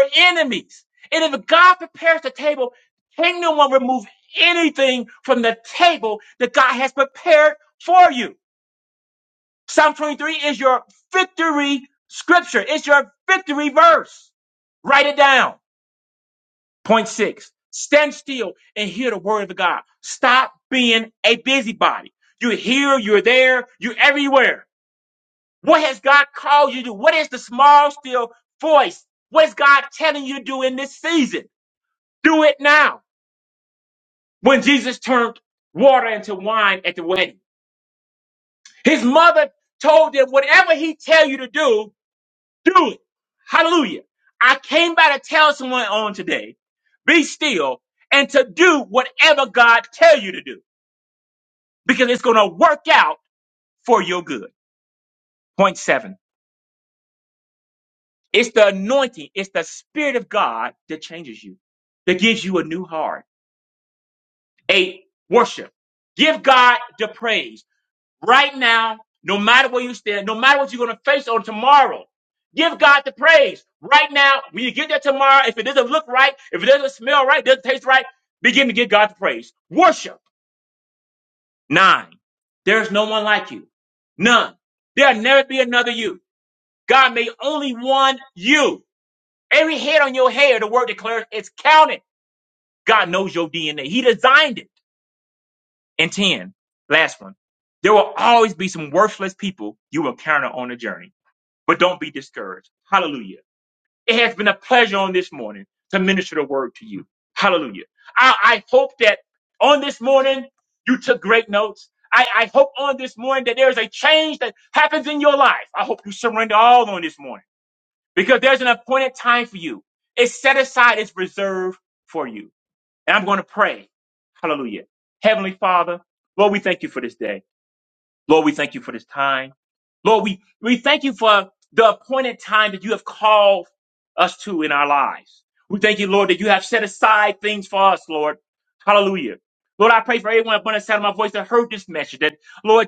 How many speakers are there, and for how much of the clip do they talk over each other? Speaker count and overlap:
one, no overlap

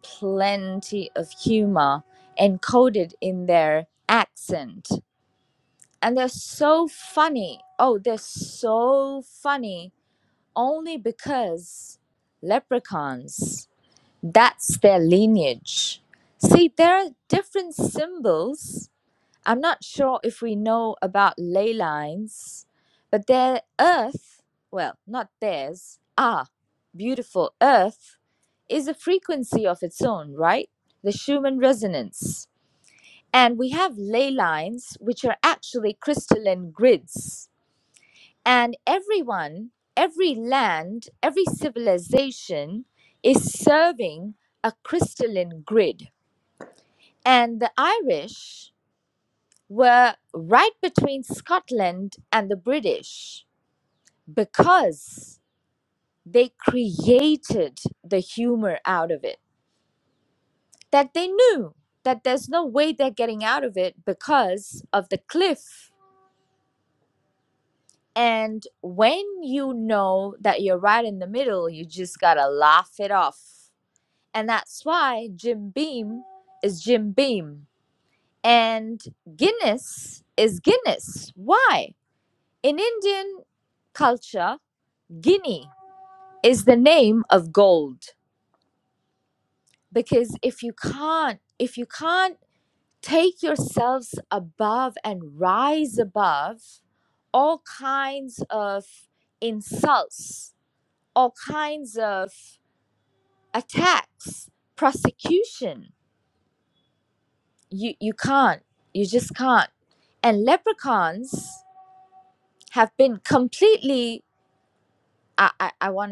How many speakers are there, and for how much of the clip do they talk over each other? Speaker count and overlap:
one, no overlap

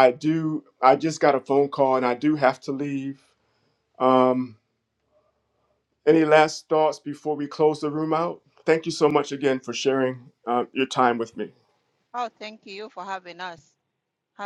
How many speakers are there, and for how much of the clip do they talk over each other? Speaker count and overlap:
two, no overlap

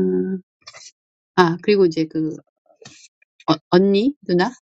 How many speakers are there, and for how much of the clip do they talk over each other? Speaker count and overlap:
one, no overlap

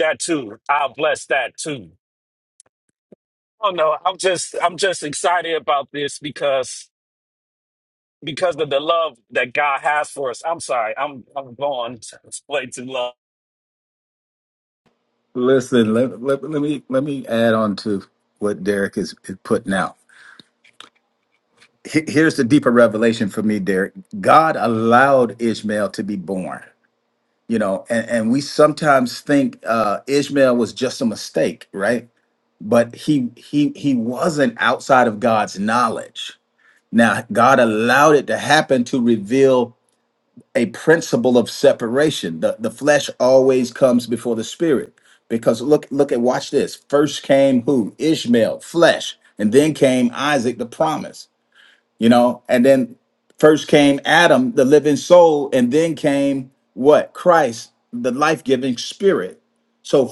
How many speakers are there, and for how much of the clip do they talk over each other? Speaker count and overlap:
two, no overlap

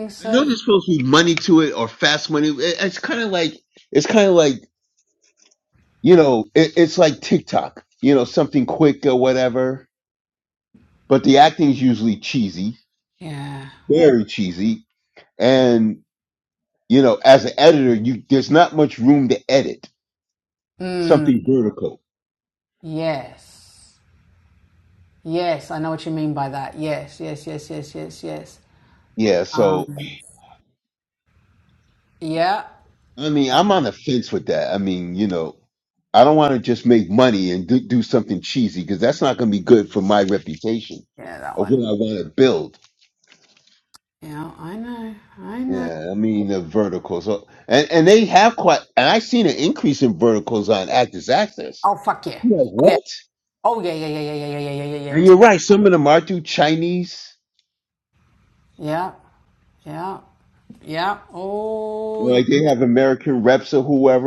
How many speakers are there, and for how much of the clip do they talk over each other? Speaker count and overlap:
two, about 3%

